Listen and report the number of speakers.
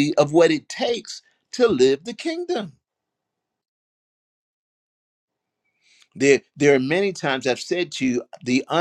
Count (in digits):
1